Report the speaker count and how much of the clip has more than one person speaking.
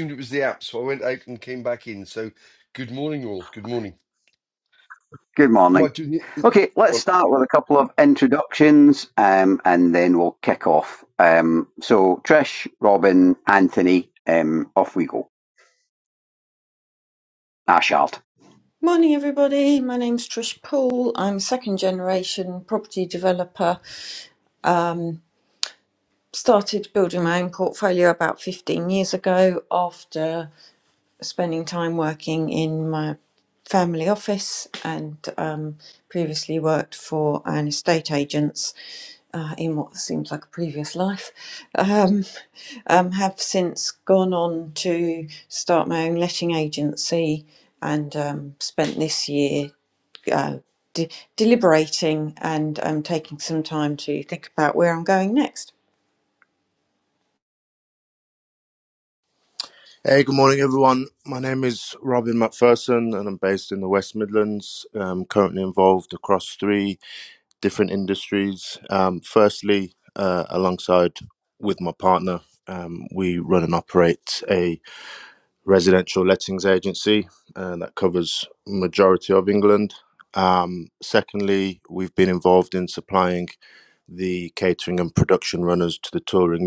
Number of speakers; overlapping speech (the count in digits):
4, under 1%